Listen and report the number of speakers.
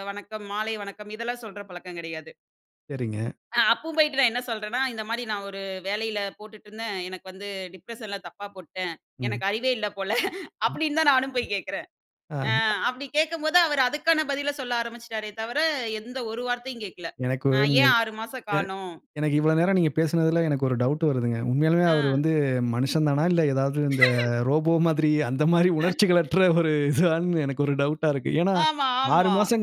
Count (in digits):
2